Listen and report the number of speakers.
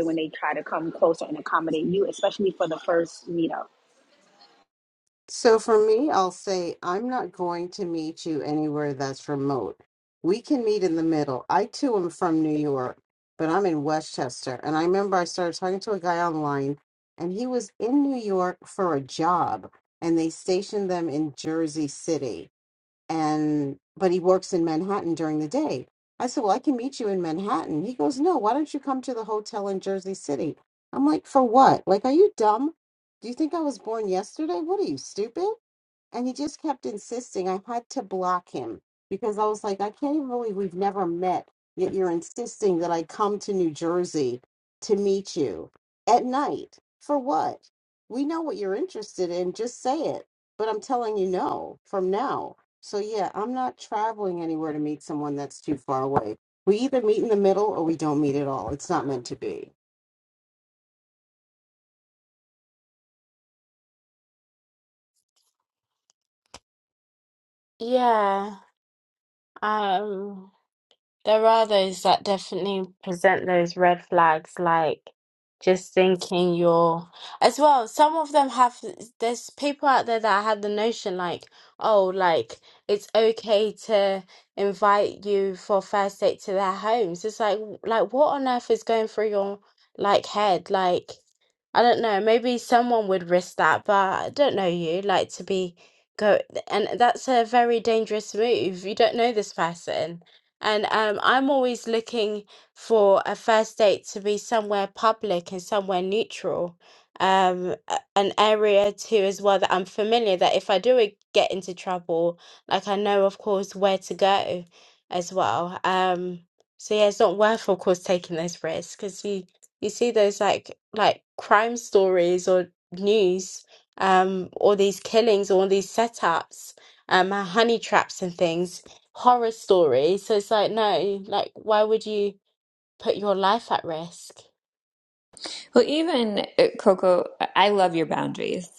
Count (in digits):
4